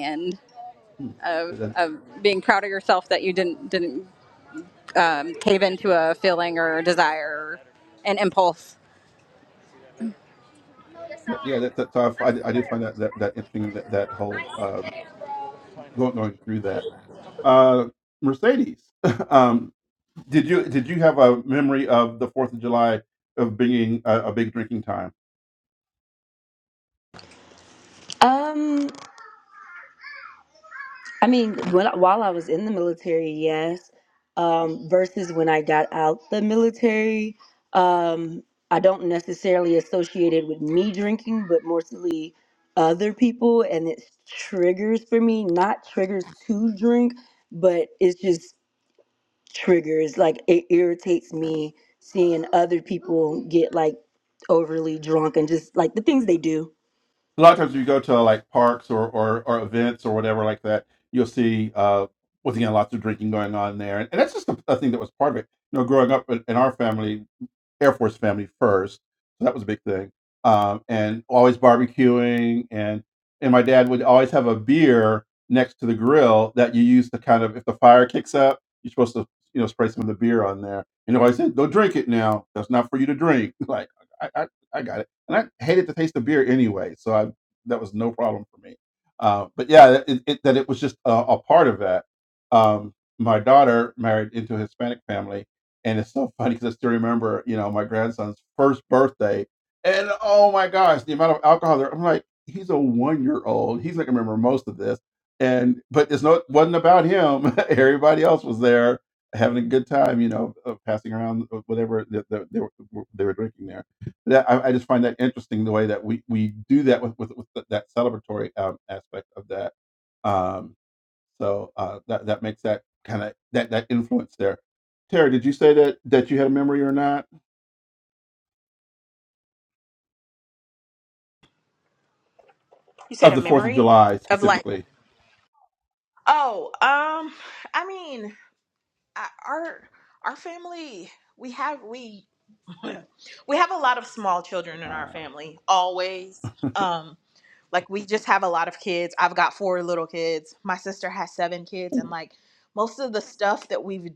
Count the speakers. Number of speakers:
four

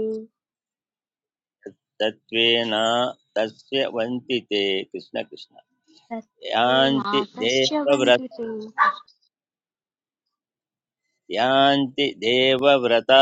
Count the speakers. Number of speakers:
two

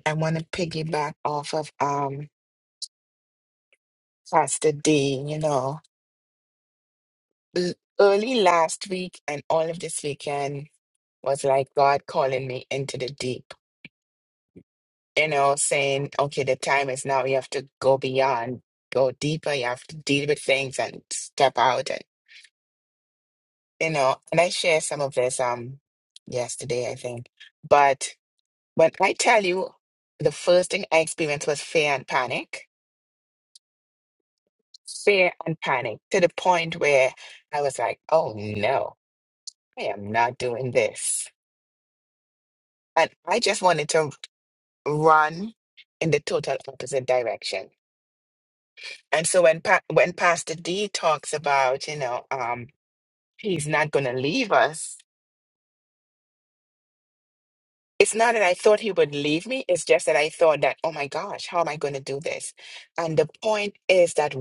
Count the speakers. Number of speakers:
one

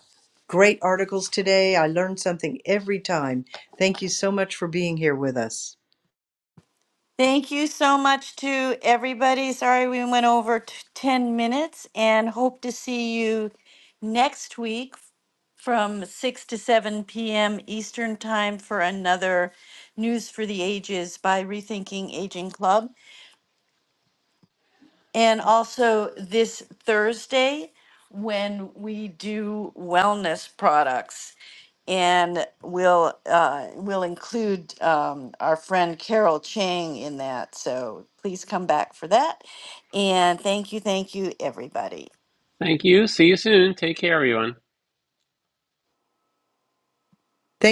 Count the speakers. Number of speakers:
three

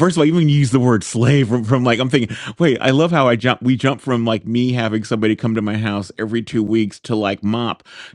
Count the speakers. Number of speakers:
one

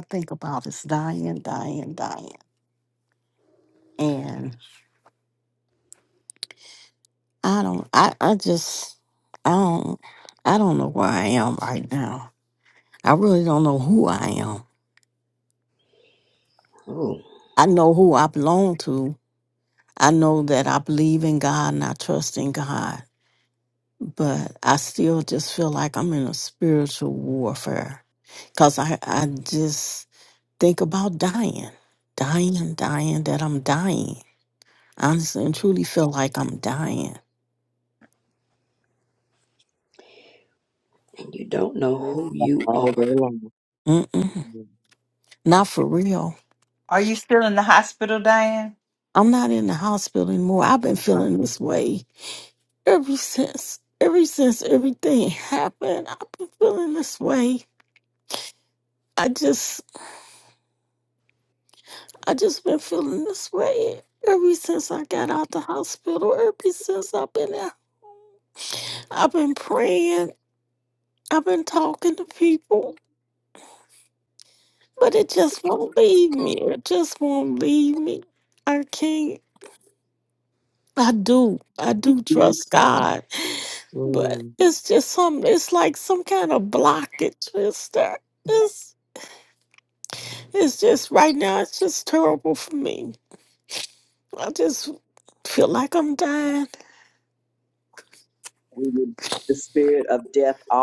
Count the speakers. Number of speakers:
four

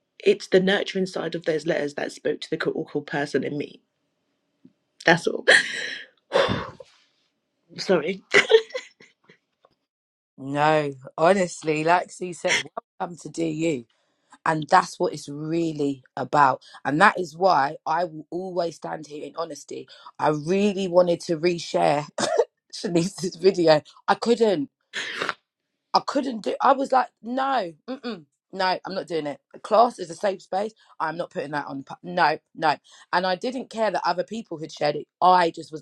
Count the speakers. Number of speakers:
two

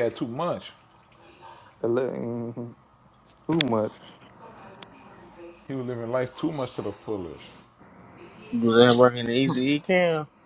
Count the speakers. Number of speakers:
three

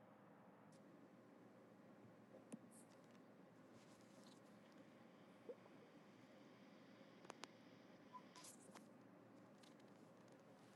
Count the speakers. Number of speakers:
zero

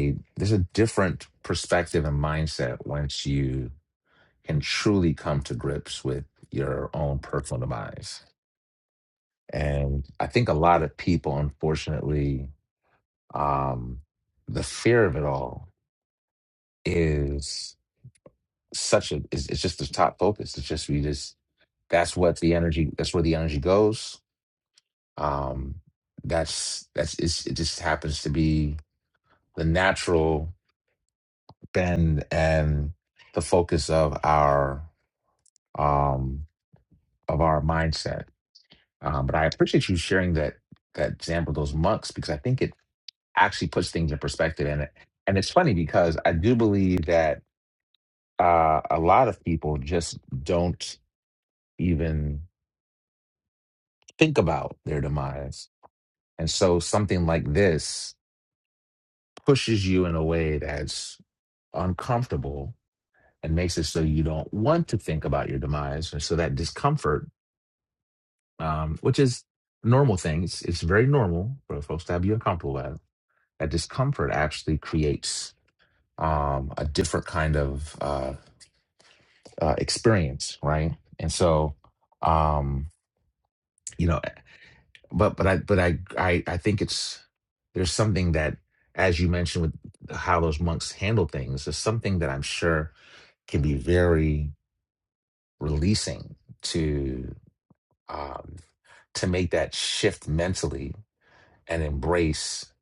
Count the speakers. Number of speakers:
one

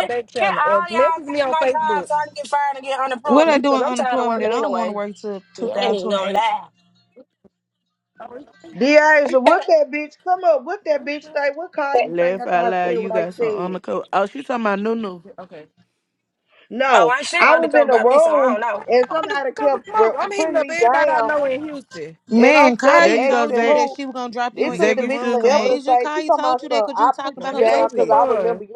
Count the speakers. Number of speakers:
five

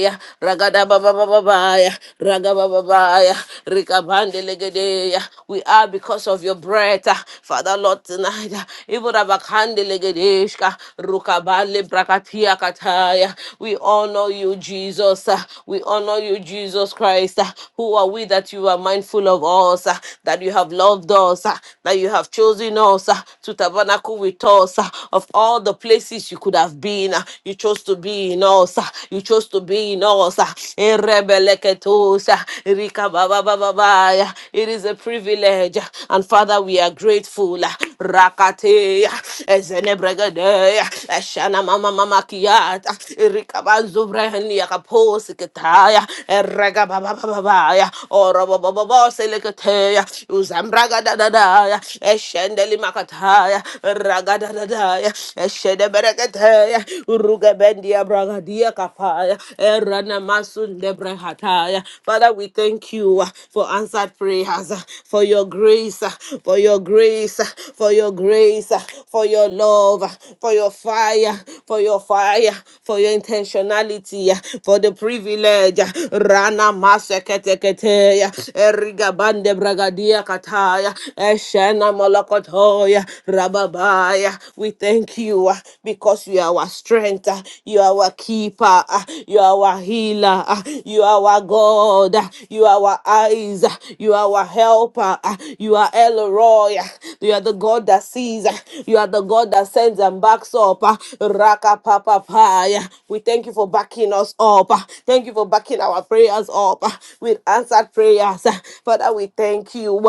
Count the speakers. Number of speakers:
one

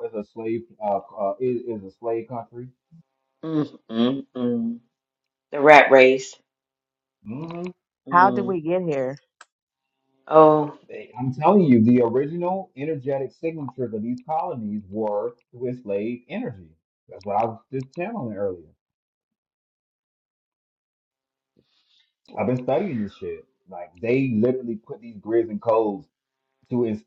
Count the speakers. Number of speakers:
three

